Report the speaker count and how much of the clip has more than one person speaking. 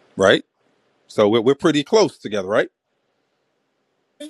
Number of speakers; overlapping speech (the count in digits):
1, no overlap